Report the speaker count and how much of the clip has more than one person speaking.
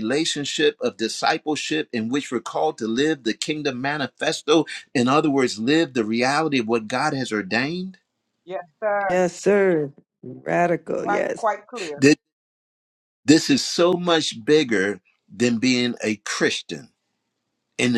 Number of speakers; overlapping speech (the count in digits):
3, about 3%